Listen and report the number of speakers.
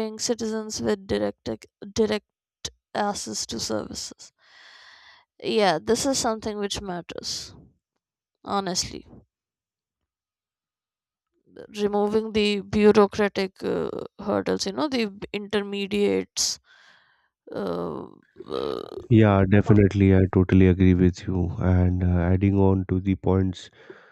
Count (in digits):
2